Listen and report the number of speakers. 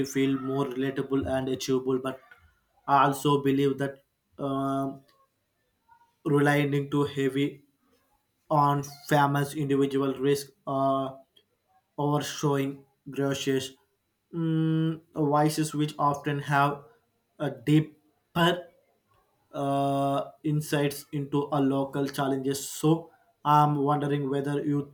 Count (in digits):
1